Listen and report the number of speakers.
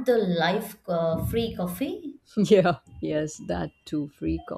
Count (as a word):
two